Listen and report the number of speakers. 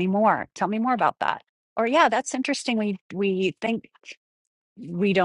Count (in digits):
1